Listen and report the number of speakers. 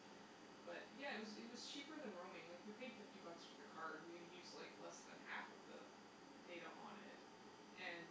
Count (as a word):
one